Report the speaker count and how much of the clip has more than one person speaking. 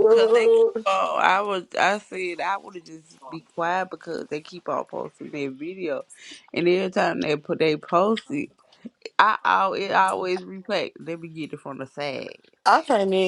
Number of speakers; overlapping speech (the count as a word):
two, about 5%